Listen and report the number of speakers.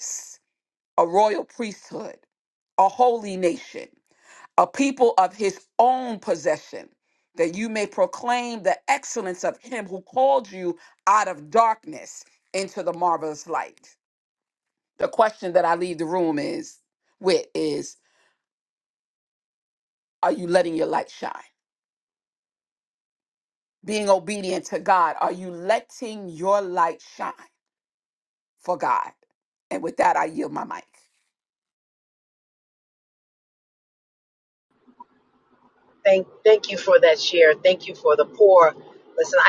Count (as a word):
two